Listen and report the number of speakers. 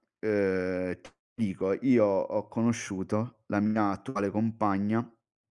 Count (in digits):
1